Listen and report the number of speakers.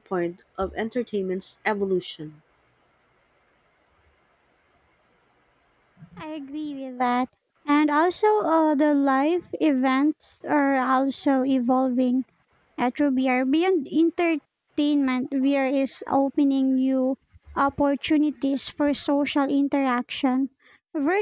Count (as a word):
two